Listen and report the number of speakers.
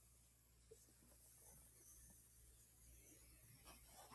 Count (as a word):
zero